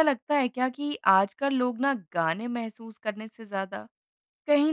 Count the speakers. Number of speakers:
one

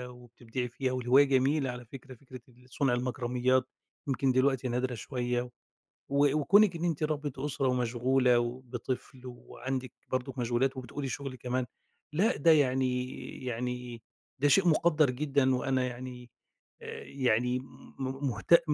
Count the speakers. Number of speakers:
one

